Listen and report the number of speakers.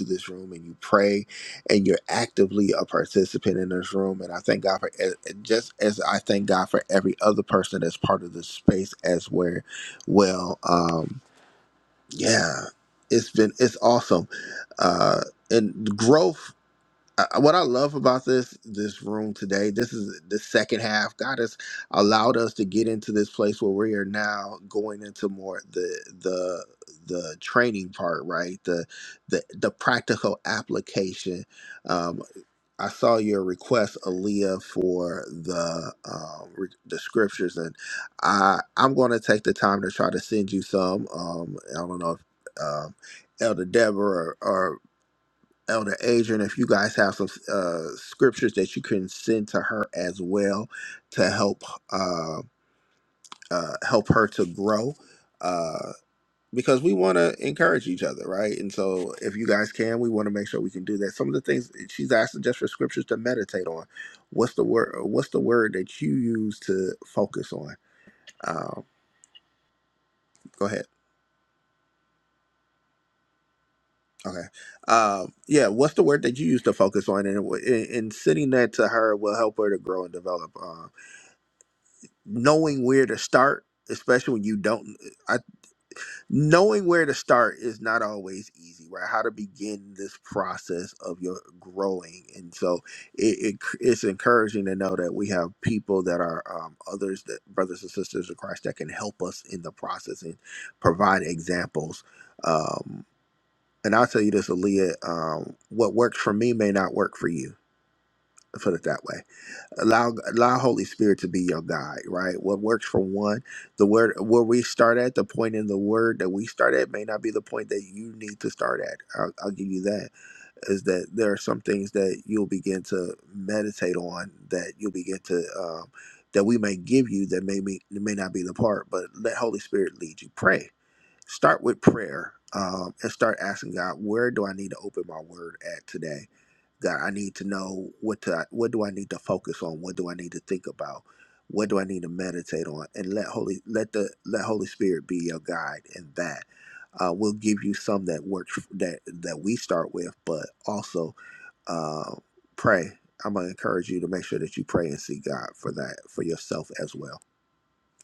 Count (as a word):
one